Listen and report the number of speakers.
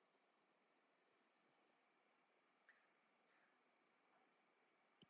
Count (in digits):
0